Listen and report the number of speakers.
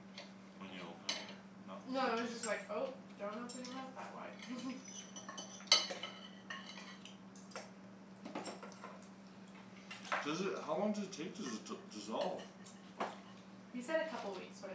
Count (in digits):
3